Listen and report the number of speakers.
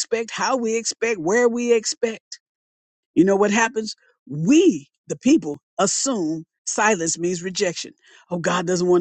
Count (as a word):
one